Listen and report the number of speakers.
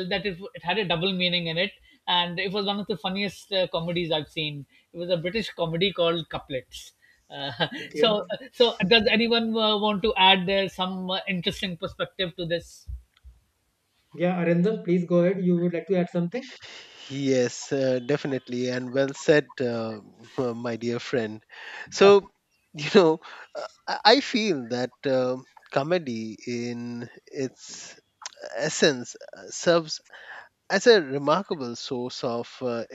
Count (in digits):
3